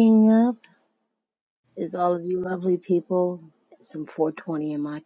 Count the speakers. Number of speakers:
one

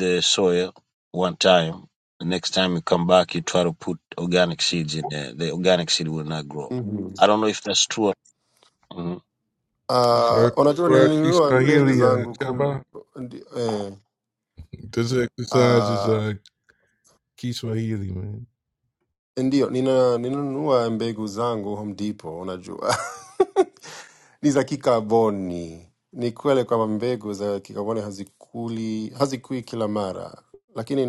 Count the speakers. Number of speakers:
three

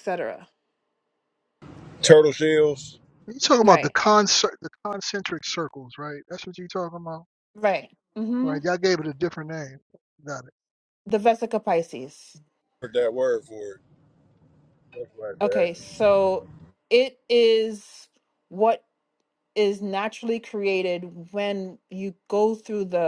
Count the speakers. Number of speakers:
three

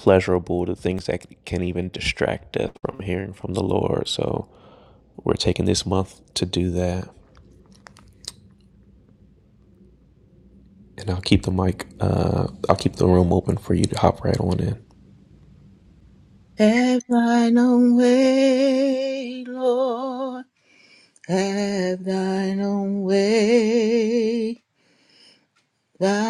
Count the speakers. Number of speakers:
two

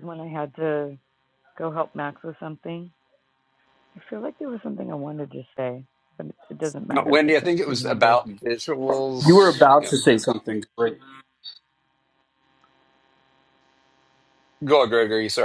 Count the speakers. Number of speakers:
three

